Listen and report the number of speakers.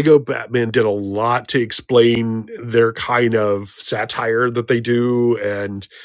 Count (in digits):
1